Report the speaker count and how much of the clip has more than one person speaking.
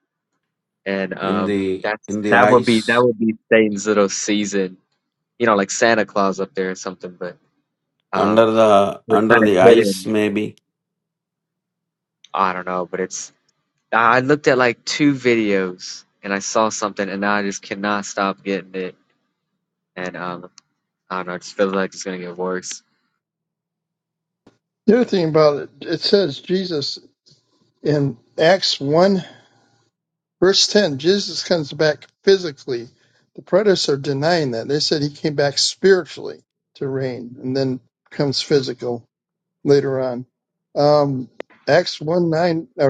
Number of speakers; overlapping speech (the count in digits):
3, about 6%